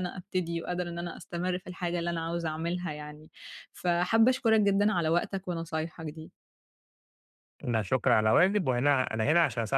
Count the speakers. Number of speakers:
two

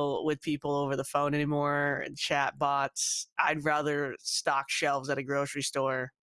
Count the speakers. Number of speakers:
one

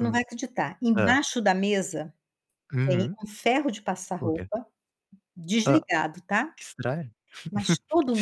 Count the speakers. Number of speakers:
two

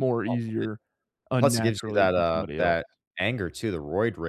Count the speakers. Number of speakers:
two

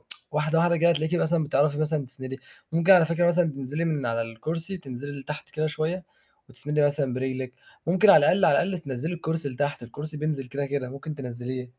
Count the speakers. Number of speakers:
one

